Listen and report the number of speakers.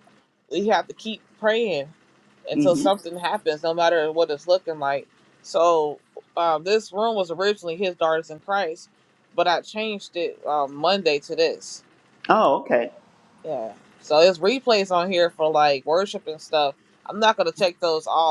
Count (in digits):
2